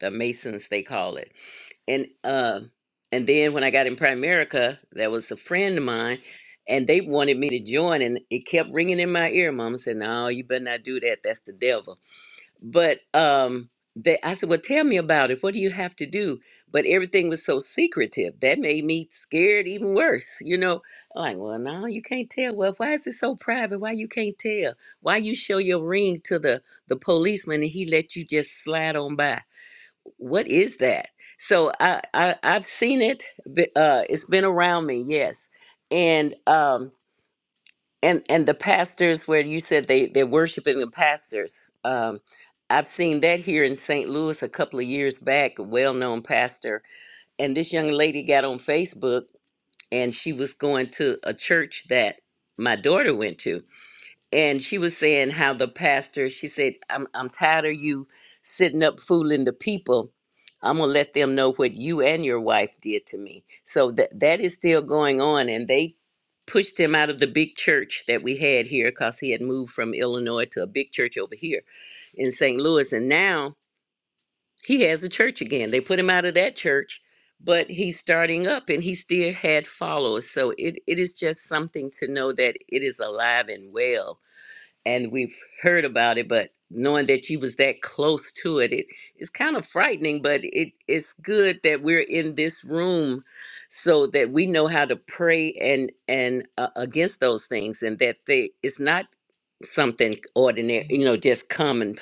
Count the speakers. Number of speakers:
one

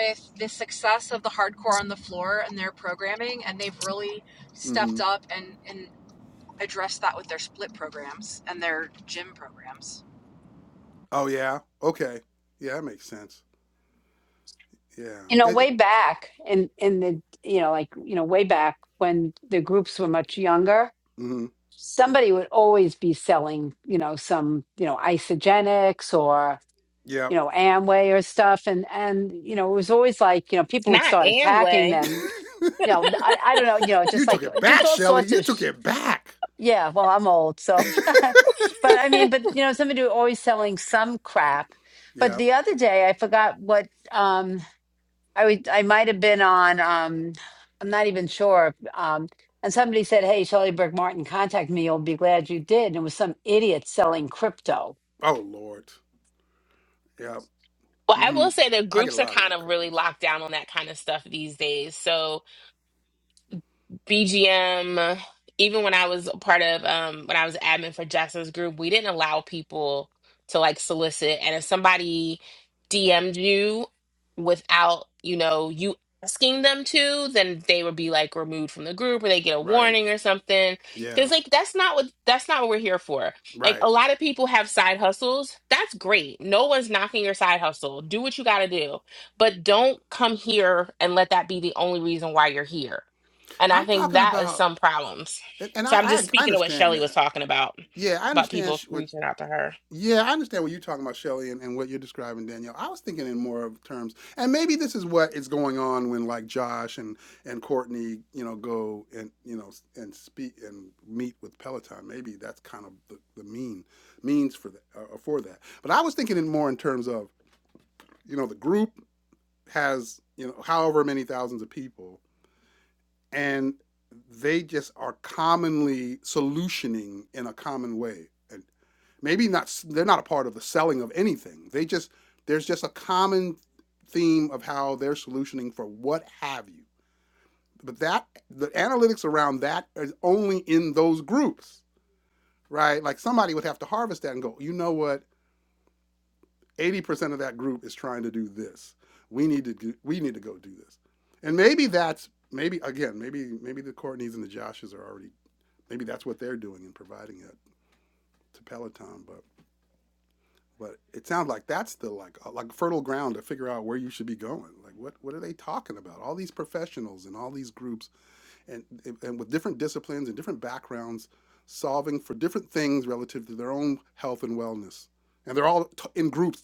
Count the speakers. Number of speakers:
four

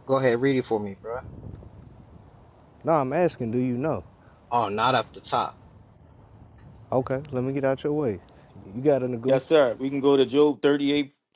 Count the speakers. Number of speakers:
three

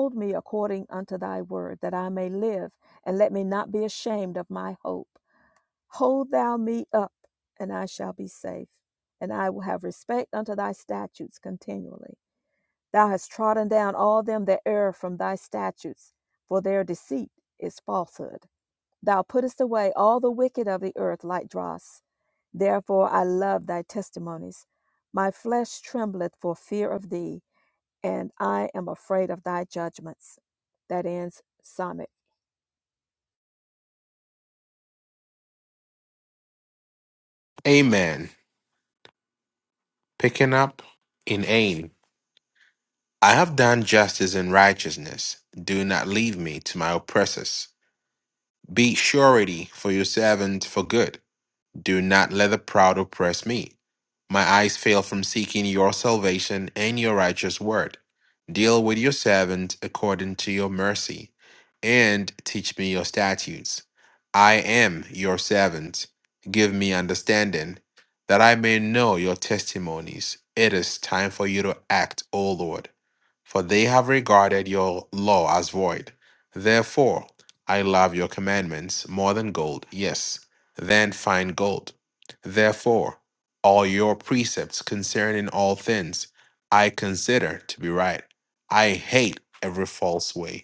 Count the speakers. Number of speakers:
two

